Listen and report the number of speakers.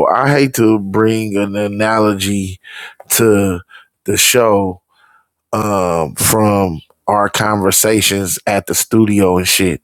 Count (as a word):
one